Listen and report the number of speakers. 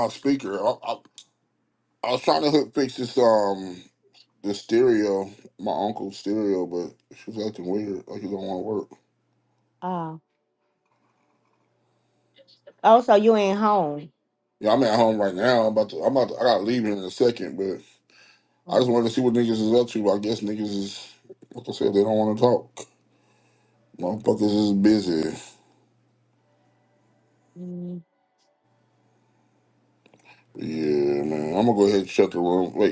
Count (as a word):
two